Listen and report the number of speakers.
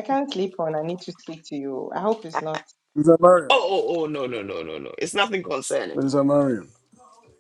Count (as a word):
three